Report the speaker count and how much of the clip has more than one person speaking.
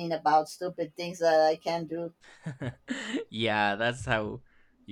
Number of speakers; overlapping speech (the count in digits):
2, no overlap